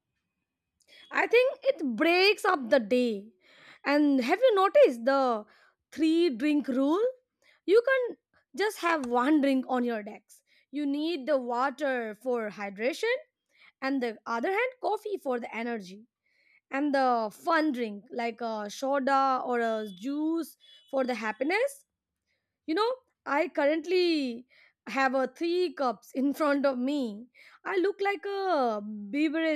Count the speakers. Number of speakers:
1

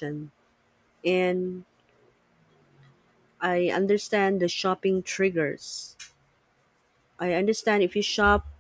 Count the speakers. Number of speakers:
1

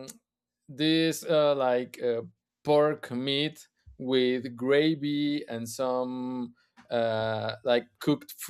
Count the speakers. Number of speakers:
1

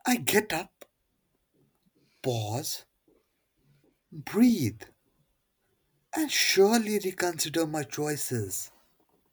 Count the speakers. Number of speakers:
1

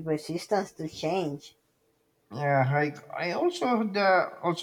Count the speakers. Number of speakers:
2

